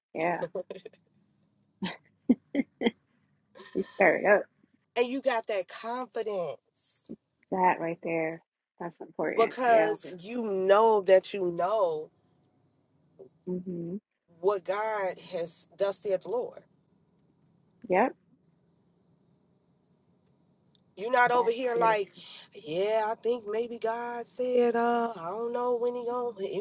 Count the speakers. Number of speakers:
2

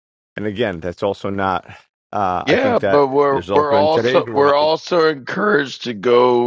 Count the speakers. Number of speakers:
2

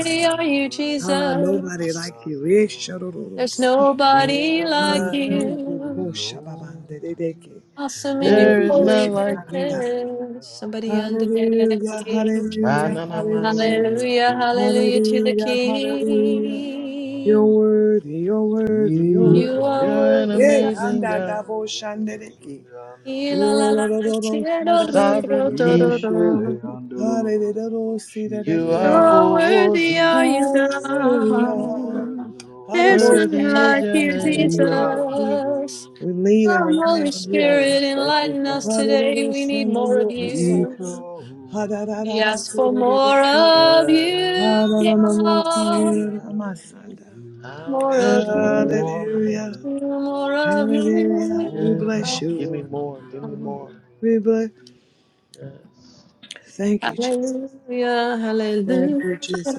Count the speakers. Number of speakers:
4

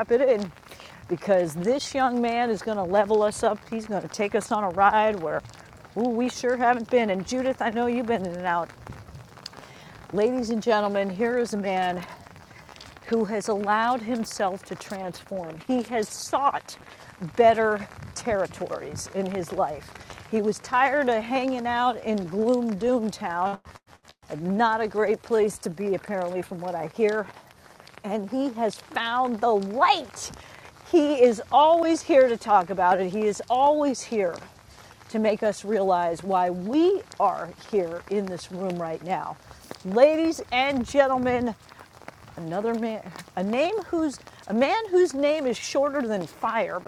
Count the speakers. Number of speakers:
1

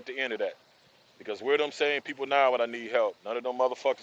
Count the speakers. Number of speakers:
1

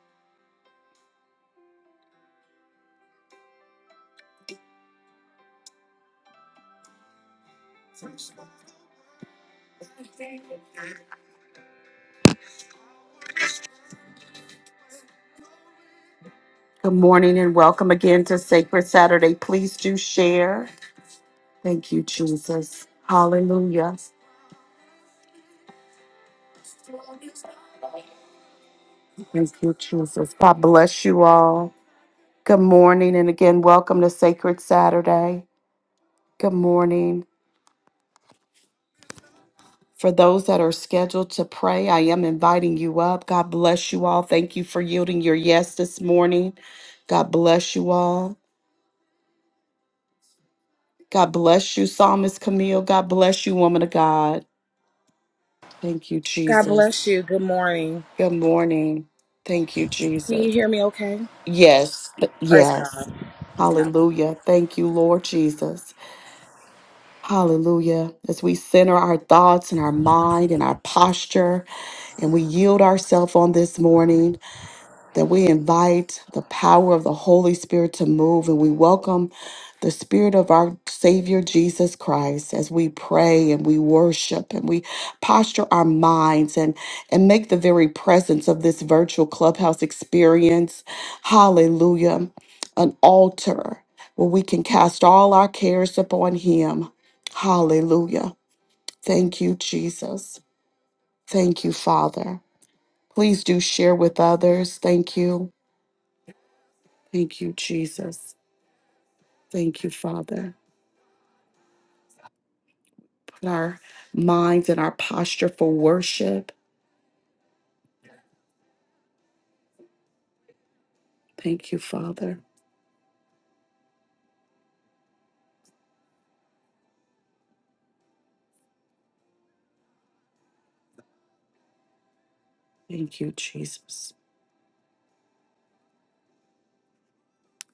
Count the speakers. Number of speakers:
2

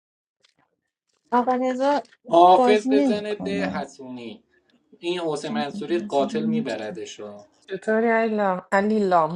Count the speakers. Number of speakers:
3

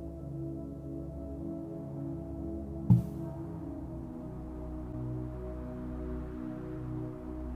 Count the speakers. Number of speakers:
0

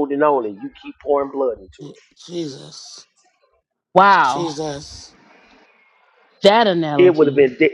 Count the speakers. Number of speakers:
3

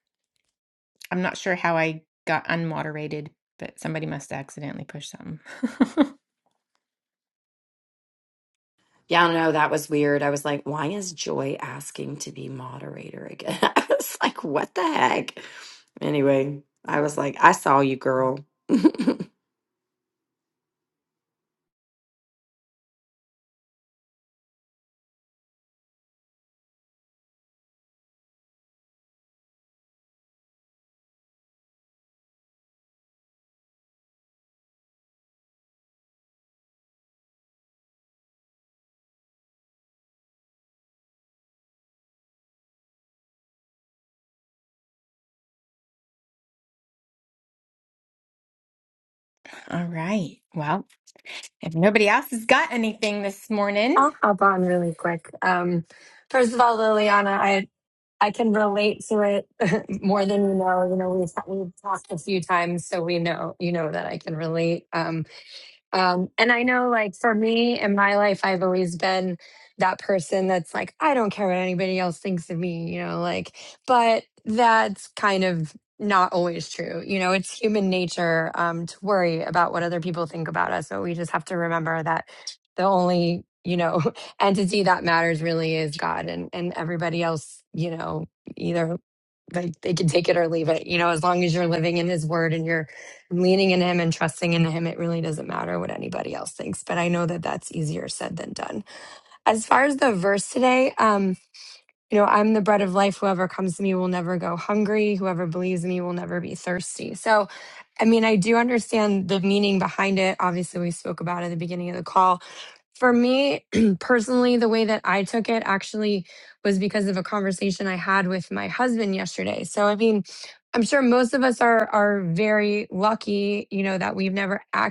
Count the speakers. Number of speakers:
3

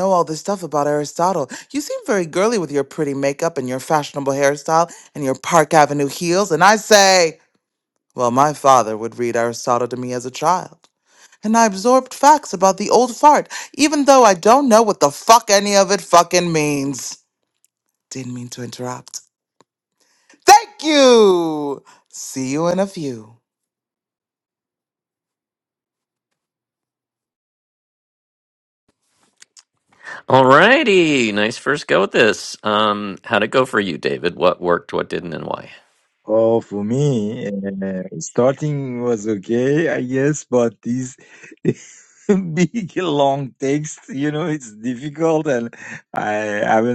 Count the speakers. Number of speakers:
3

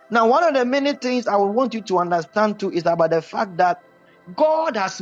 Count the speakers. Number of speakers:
1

